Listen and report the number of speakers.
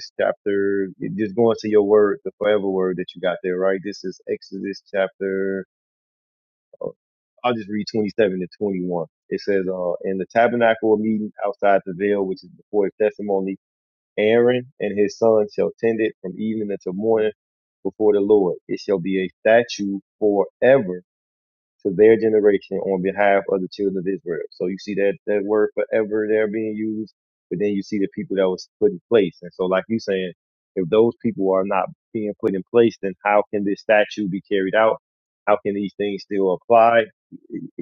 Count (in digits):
1